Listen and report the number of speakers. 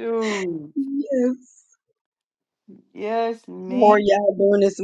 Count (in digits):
2